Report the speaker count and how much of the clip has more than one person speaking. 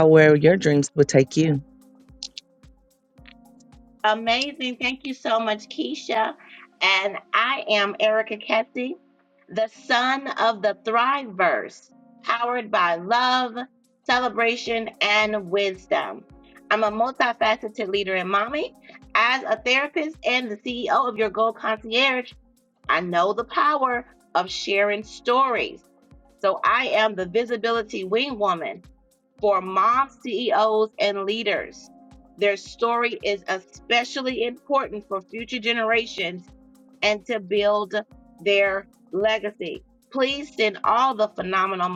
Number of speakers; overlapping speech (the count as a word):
two, no overlap